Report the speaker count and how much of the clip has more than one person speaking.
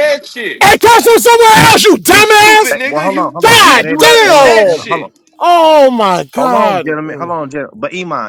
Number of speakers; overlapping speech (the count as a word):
three, about 47%